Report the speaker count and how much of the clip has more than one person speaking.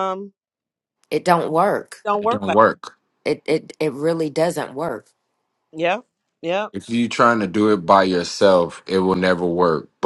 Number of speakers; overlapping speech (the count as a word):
three, about 3%